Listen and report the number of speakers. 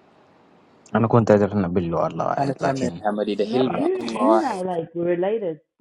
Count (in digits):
3